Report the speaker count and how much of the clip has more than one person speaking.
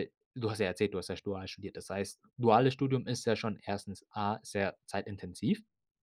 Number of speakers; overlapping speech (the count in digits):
1, no overlap